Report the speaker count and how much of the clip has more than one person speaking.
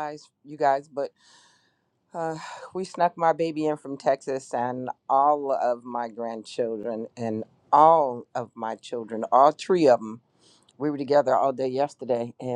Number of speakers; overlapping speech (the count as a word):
one, no overlap